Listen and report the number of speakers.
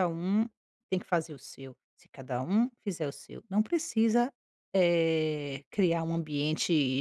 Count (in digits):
1